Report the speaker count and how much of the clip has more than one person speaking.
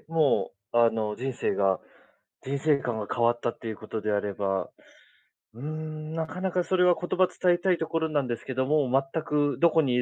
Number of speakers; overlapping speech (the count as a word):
one, no overlap